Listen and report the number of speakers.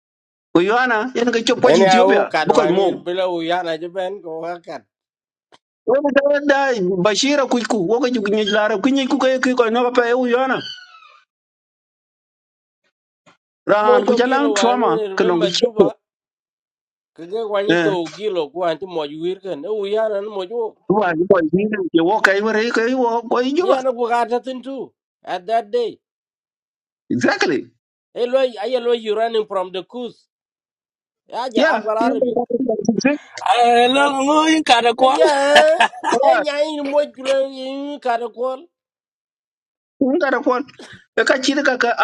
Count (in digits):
3